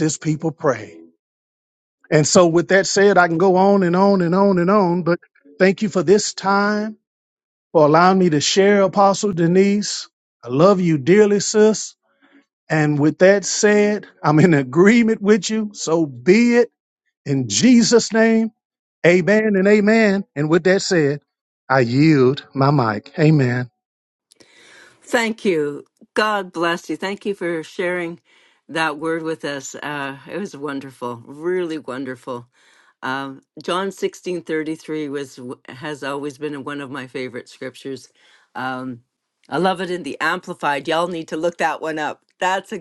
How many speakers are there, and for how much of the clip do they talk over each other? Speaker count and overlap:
2, no overlap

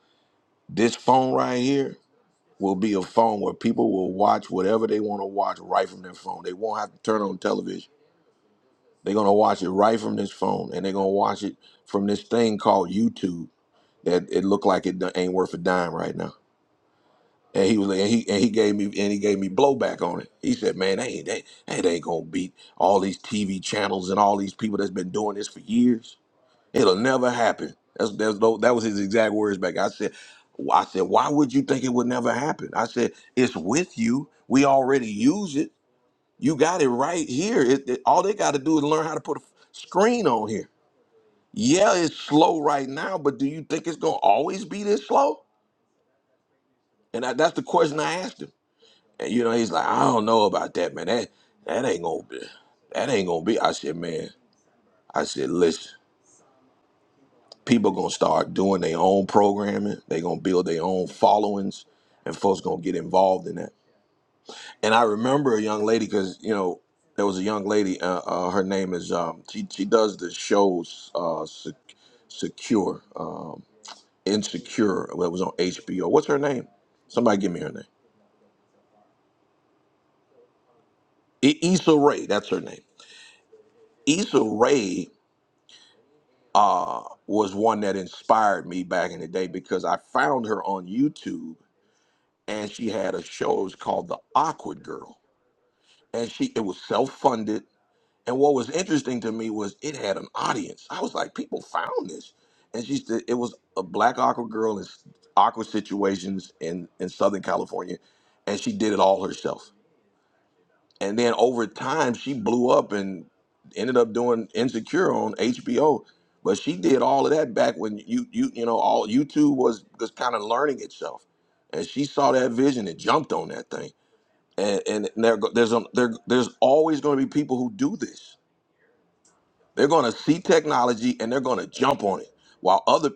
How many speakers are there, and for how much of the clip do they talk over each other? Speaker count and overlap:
1, no overlap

